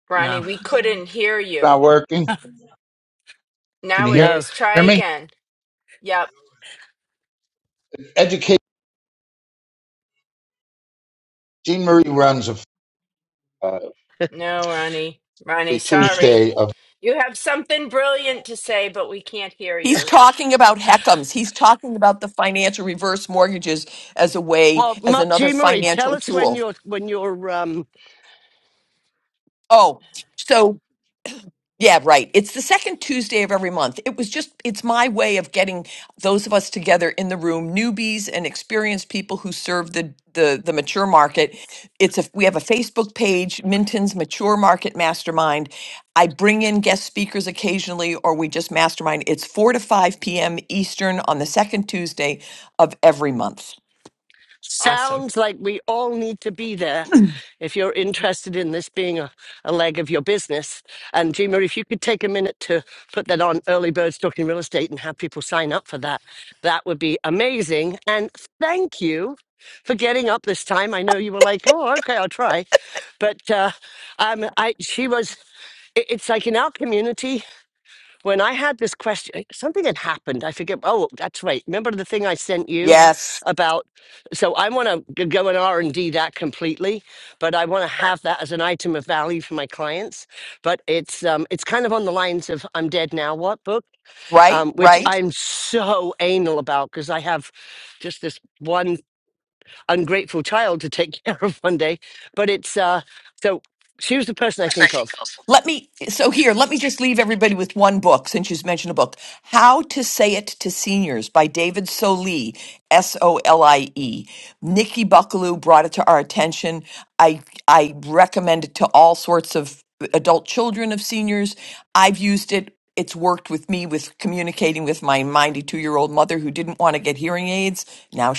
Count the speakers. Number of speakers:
4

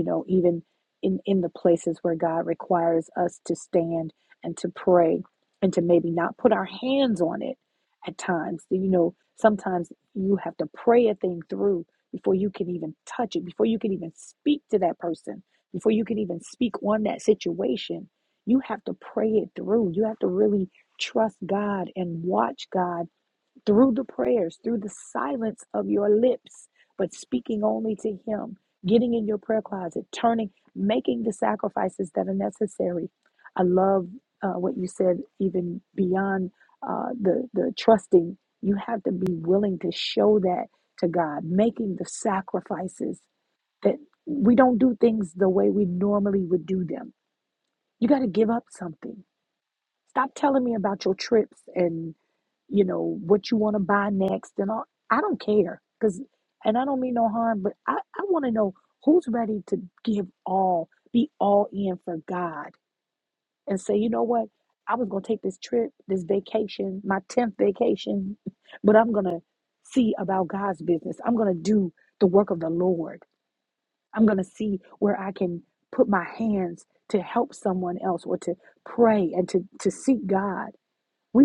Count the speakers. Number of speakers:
1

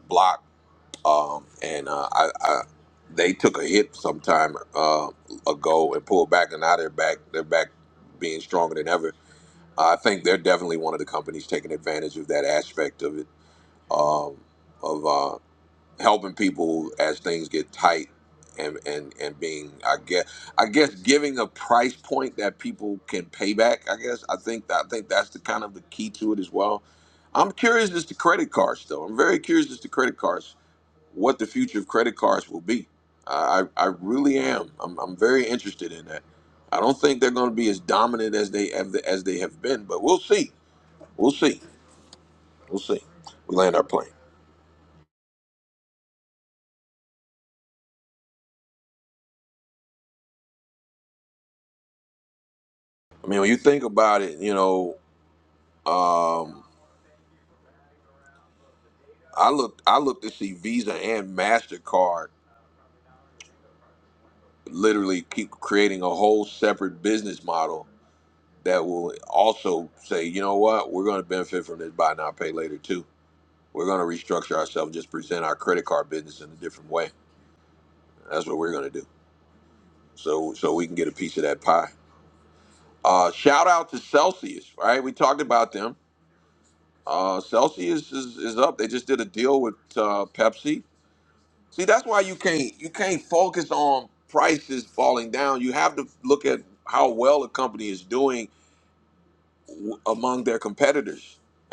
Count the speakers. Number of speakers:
1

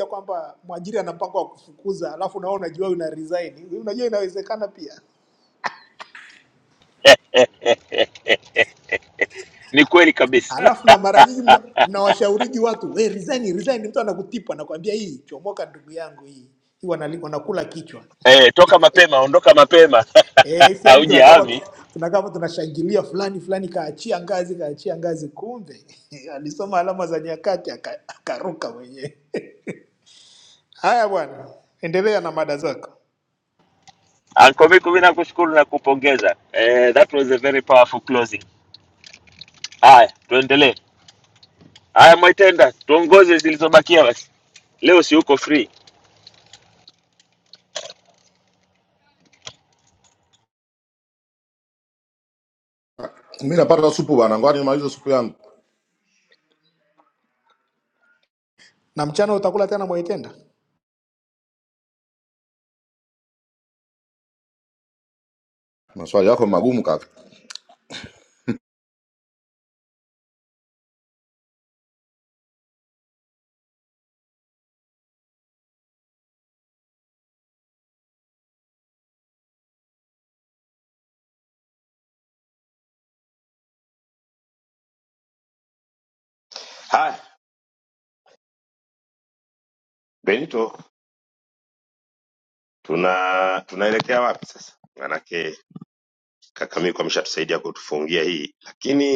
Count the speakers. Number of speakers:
4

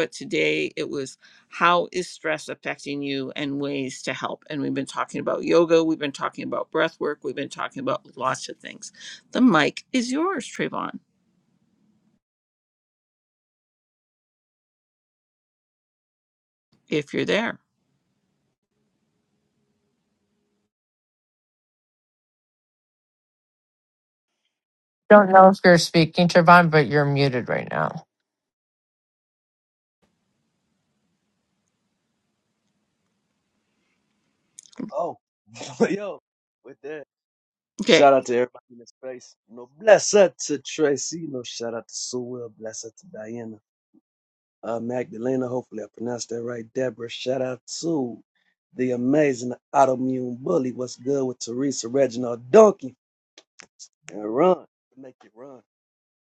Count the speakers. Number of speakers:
3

